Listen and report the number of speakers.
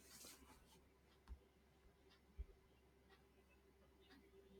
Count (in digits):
0